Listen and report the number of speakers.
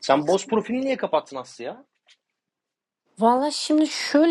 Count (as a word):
two